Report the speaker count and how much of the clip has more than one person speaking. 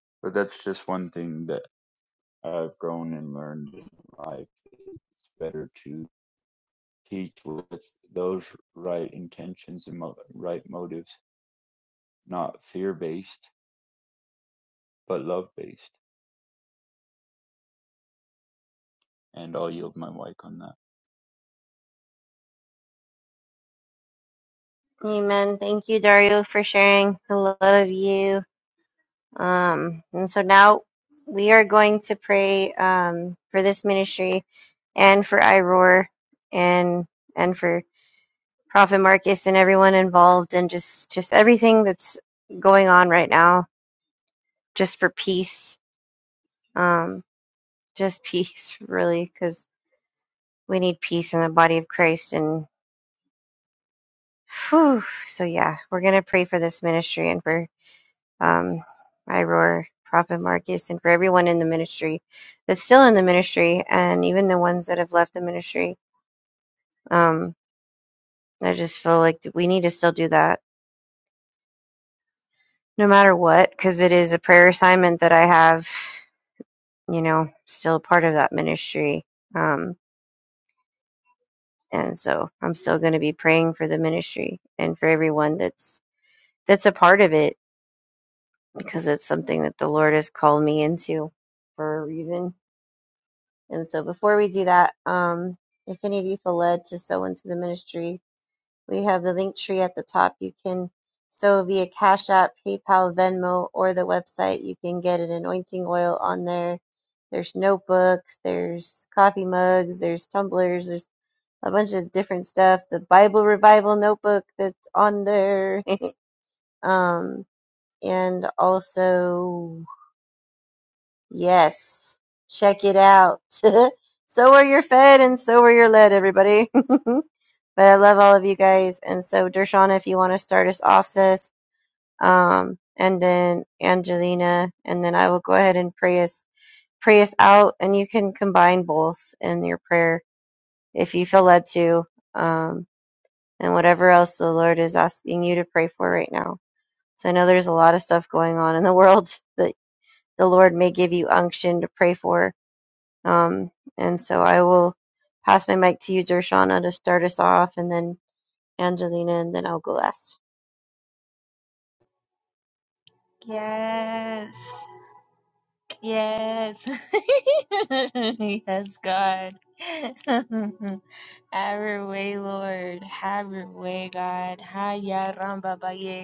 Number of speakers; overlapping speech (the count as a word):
three, no overlap